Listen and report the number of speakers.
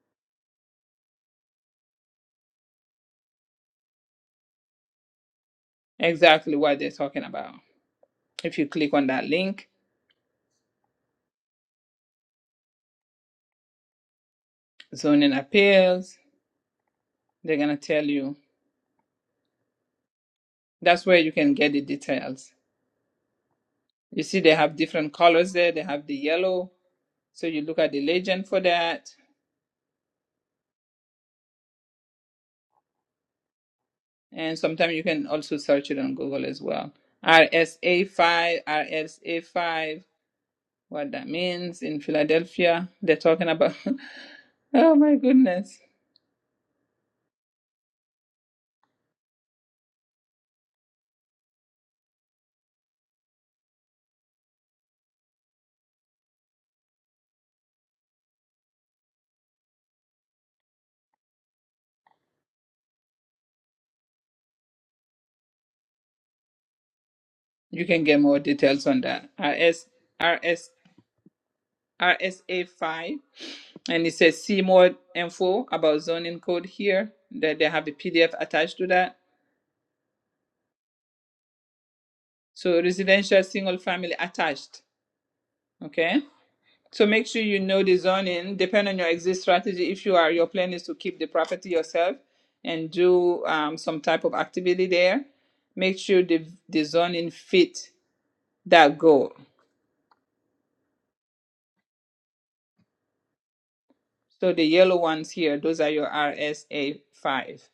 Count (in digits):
1